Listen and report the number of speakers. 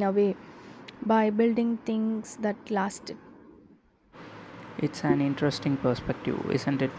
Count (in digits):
2